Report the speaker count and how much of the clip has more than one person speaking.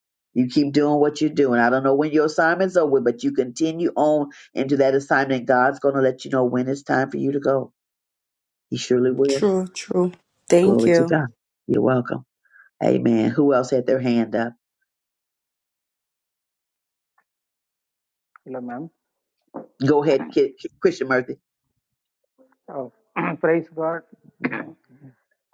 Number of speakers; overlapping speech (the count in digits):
3, about 3%